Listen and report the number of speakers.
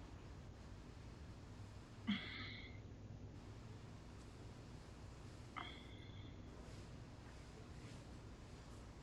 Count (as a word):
zero